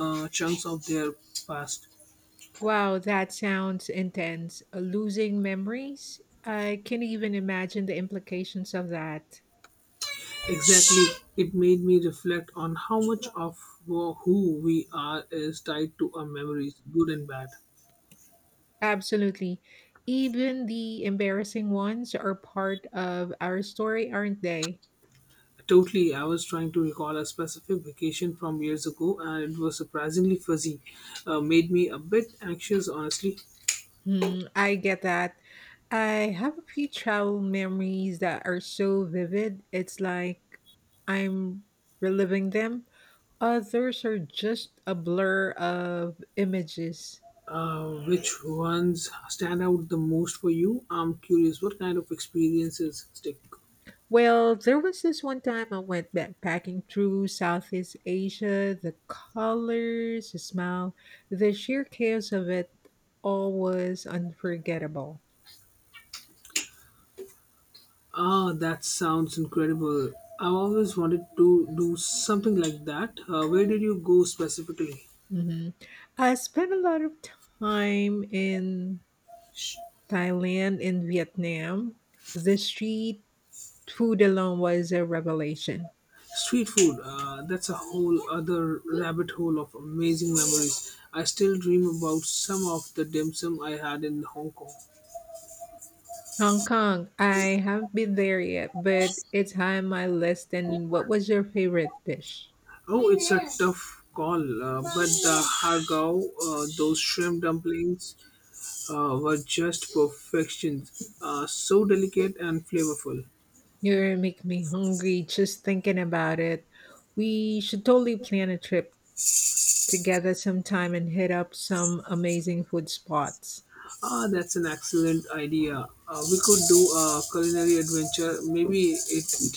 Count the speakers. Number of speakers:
two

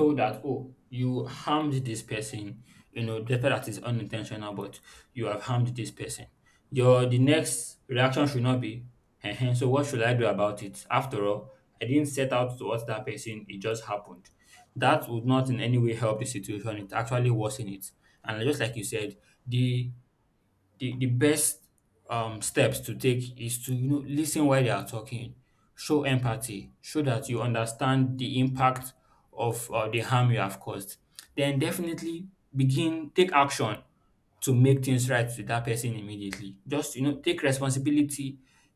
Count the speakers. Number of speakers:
one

